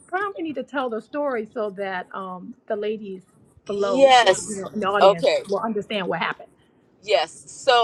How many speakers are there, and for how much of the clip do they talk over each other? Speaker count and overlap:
two, about 19%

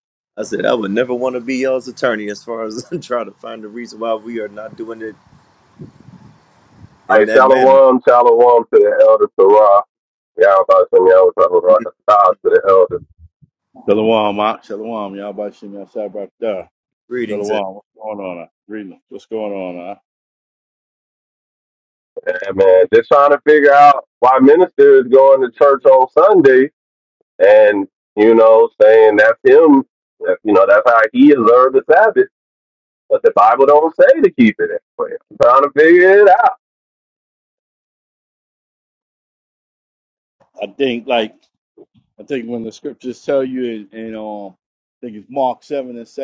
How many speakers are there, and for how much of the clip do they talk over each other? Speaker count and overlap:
three, about 3%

